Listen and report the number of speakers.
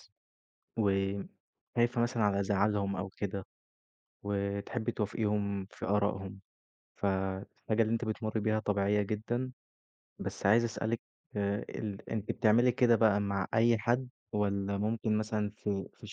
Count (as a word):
one